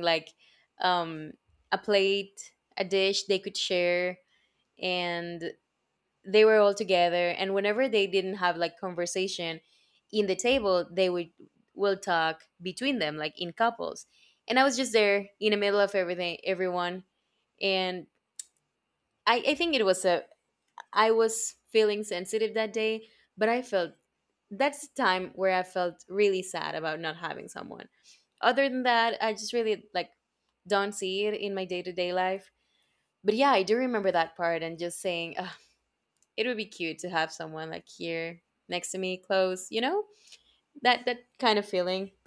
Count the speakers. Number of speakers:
1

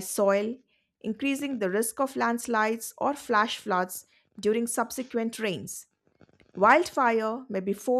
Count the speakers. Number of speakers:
1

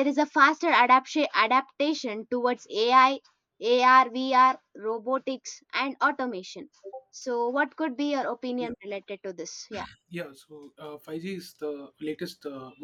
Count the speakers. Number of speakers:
2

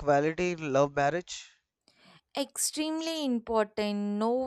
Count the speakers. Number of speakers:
2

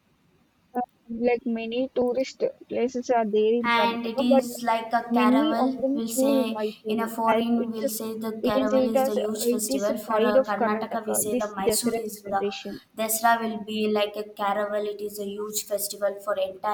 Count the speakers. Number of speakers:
2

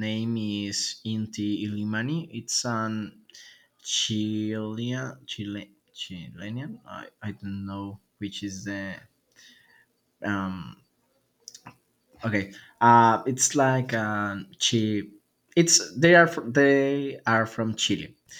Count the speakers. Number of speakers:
1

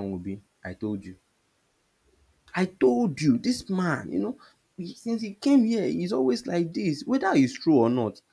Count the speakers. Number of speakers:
1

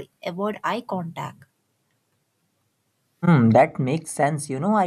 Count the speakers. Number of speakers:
2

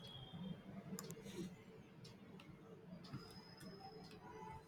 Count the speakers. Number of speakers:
0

